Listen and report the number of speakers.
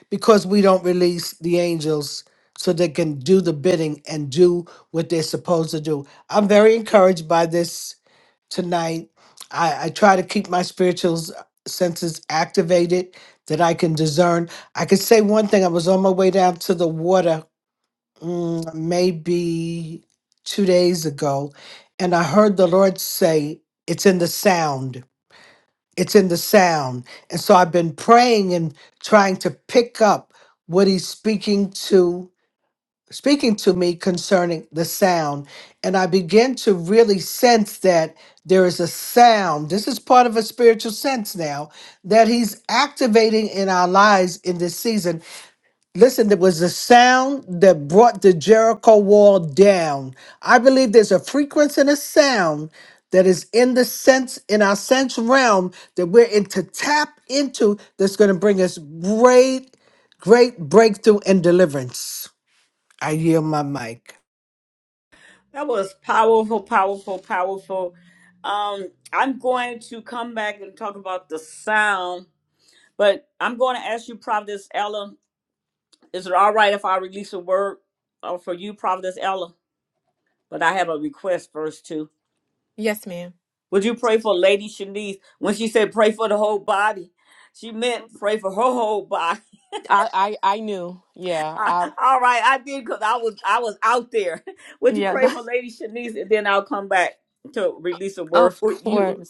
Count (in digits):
3